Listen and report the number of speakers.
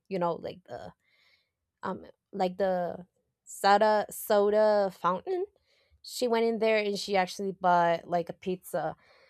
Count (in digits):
1